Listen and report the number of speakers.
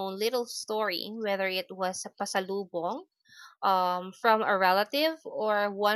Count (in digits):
1